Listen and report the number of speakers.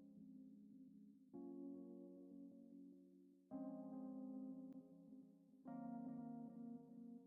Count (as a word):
zero